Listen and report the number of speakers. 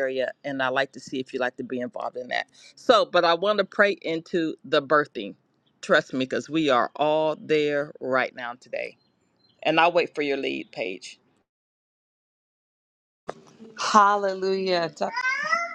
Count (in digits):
2